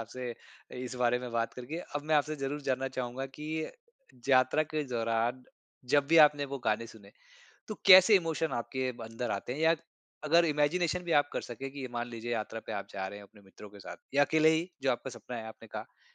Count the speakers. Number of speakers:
1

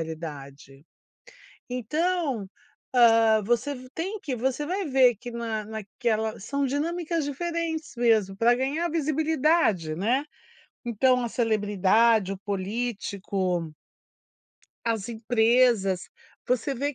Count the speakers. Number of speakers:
1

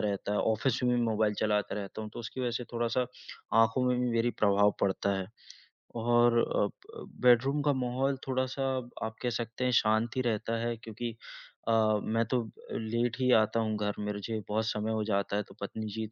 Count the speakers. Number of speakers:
1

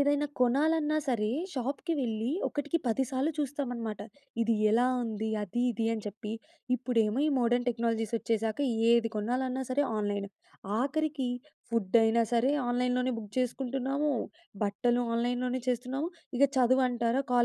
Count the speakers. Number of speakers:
1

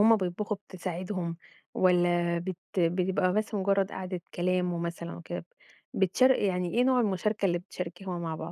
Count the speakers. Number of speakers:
1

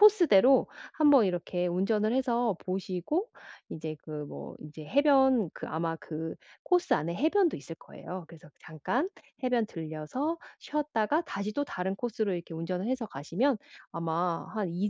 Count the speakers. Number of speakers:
1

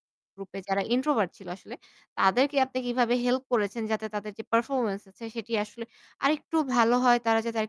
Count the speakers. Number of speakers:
1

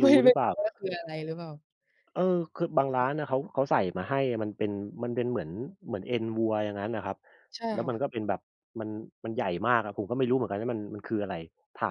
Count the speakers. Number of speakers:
2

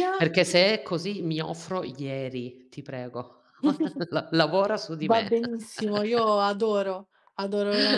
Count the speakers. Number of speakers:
2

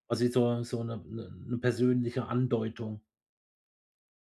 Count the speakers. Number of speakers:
1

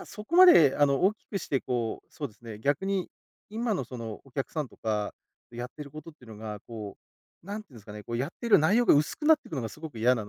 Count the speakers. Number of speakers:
1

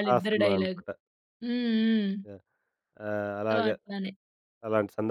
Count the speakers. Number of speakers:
2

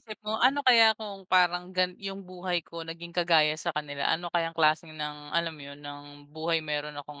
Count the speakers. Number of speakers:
1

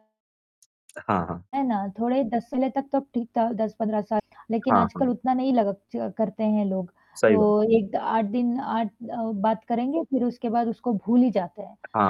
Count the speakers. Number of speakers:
2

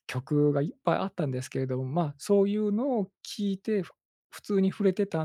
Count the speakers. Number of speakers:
1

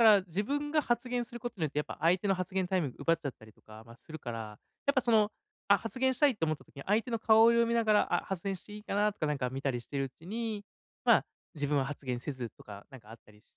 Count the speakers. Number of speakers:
1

